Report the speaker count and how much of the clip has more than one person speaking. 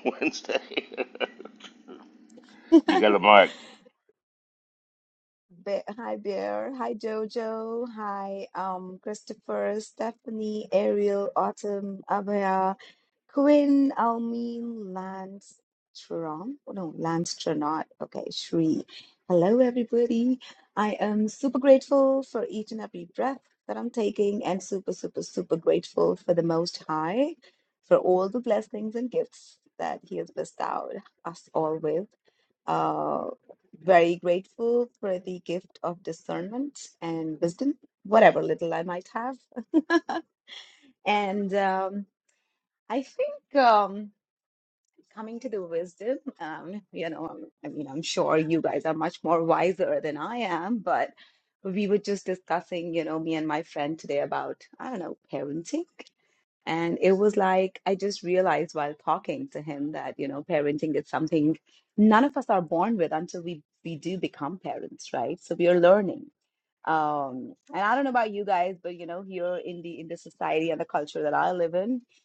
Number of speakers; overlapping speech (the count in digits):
2, no overlap